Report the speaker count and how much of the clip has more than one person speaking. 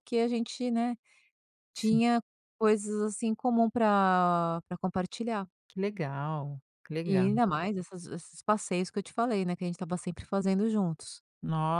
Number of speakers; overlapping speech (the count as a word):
two, about 4%